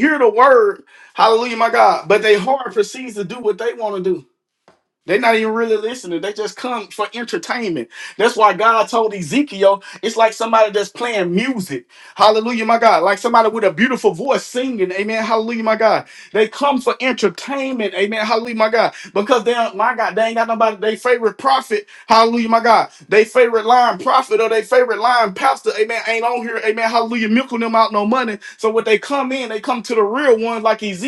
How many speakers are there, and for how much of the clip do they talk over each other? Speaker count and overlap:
1, no overlap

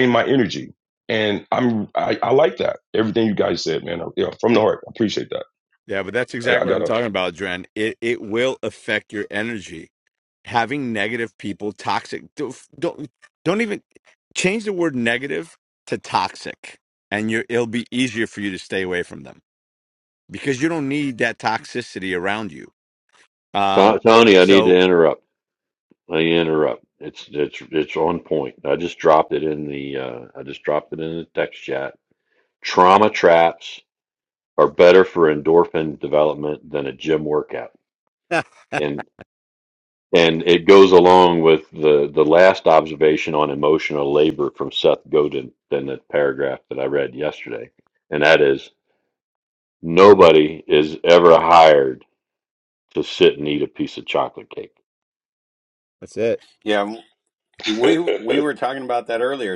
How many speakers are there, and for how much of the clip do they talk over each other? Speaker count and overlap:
4, about 2%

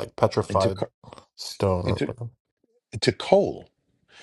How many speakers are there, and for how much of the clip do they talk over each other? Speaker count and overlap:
2, about 12%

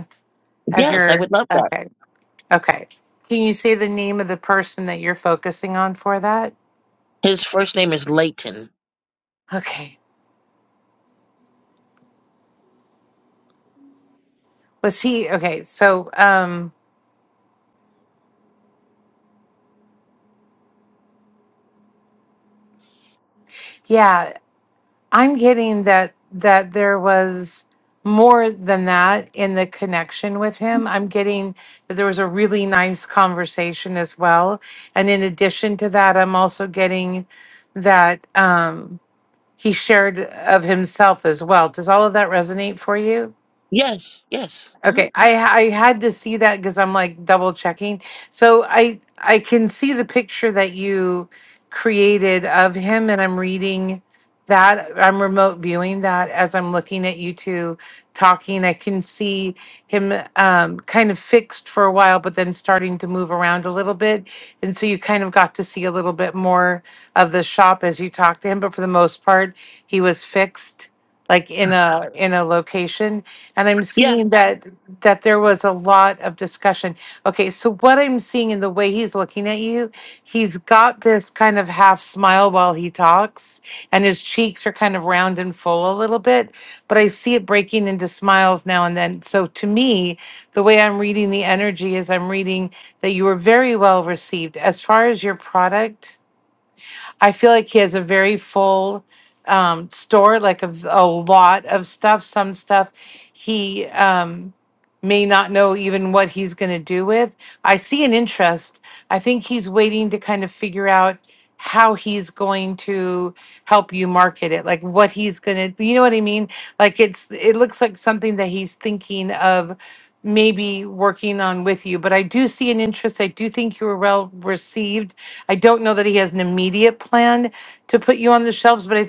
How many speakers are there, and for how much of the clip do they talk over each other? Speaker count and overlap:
2, about 1%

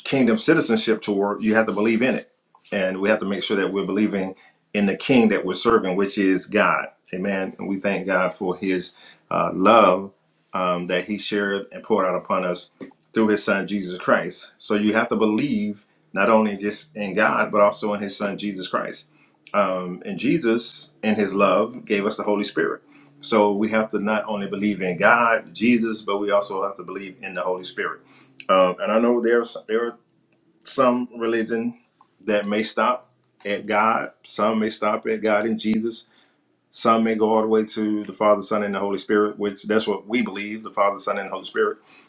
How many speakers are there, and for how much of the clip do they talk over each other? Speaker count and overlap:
1, no overlap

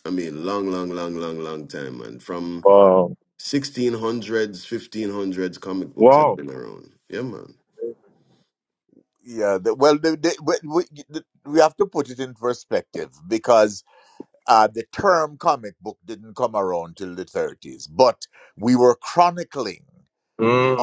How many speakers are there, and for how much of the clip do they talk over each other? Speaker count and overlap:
3, about 2%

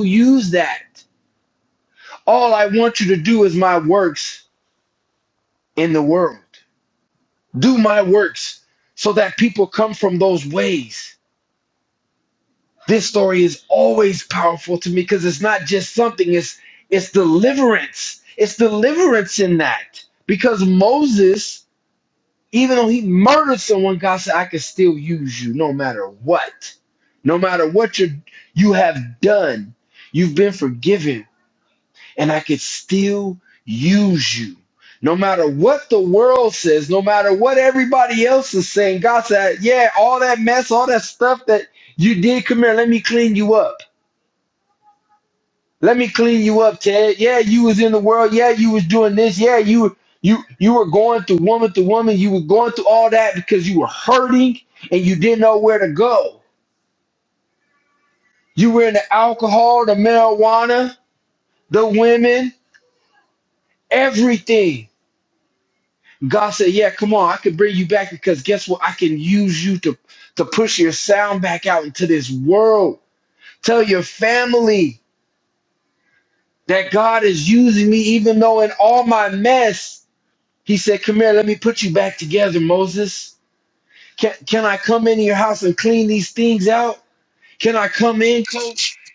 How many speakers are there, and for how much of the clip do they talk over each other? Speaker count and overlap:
1, no overlap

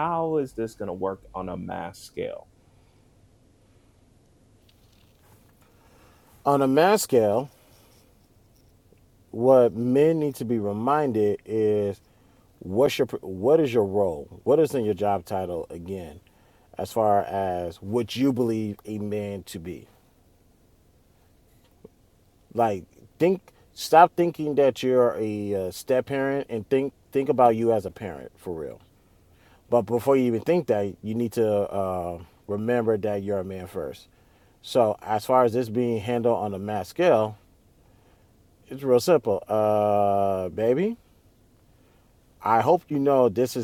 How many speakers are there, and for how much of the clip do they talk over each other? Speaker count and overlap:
2, no overlap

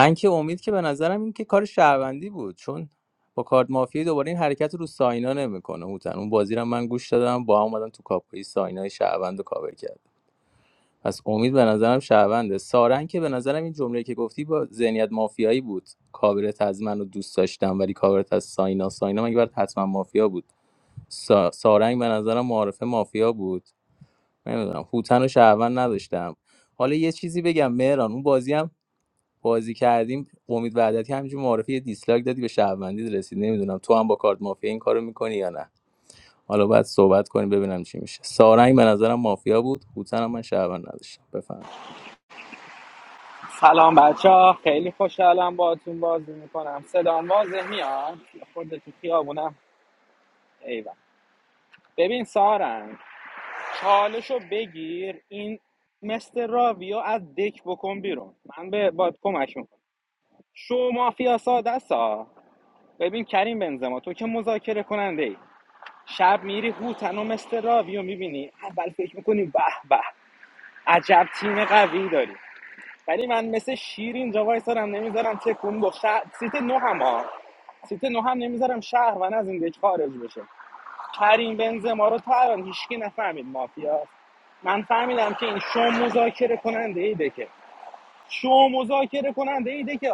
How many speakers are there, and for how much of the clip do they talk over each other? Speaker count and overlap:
2, no overlap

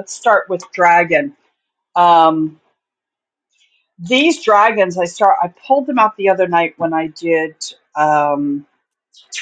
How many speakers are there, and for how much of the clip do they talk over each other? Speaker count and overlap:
1, no overlap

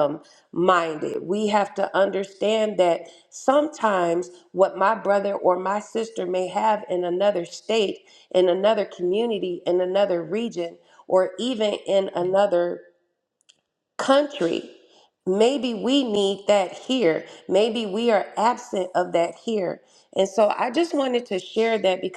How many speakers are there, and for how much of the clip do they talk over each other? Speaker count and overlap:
1, no overlap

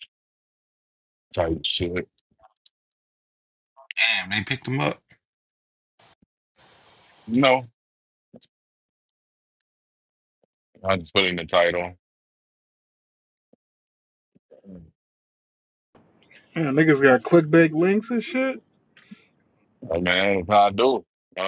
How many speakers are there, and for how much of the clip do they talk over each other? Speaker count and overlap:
3, no overlap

